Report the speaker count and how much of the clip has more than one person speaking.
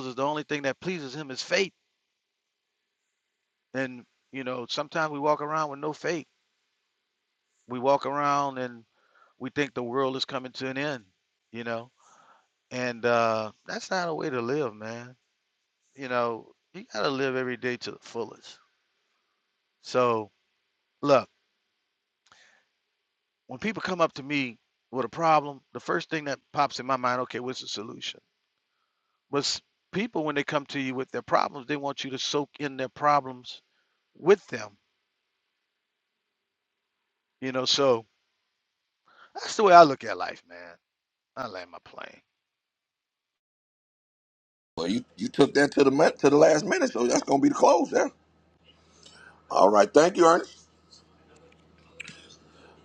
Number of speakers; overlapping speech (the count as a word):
two, no overlap